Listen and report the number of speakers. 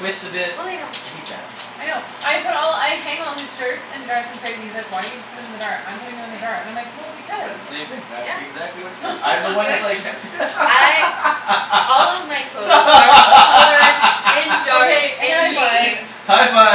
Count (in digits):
3